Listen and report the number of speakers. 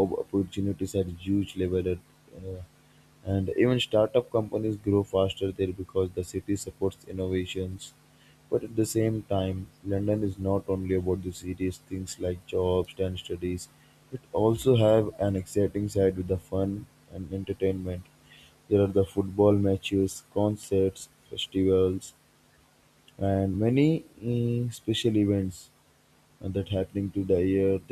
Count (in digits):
1